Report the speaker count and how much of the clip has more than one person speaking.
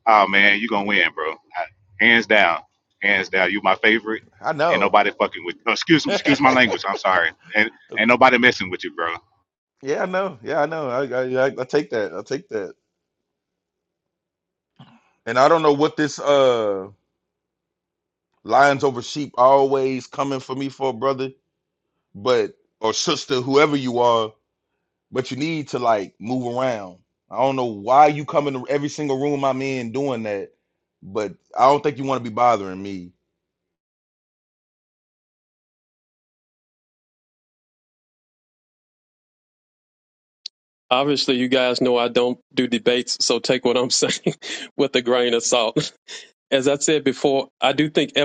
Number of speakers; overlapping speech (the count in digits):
3, about 1%